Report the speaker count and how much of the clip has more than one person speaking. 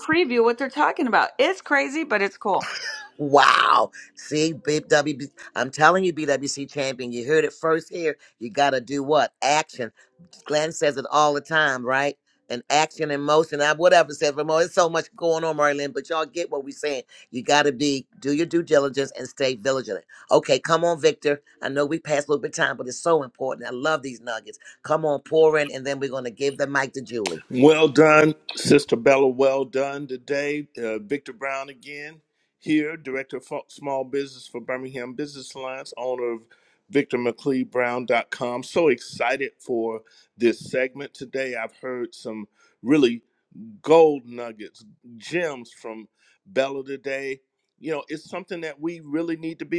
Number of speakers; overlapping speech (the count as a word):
three, no overlap